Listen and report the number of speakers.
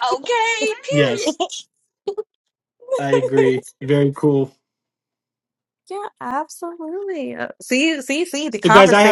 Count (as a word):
three